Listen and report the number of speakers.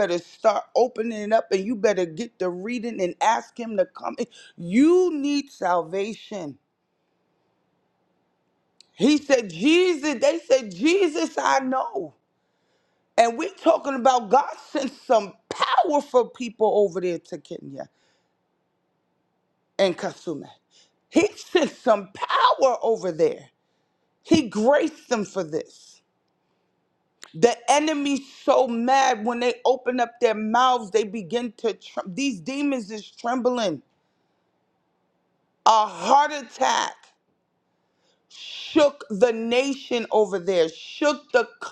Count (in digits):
1